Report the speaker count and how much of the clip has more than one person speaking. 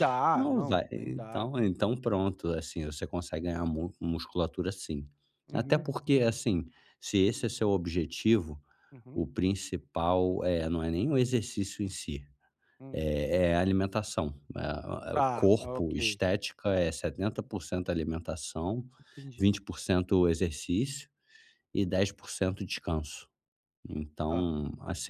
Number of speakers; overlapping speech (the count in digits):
2, about 11%